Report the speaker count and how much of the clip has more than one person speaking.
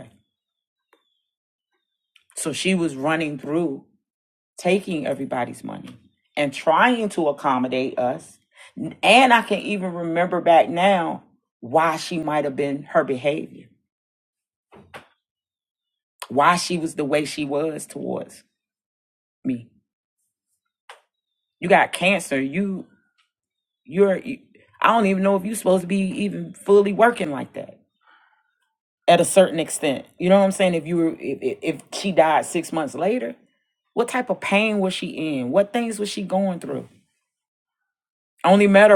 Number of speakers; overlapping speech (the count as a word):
one, no overlap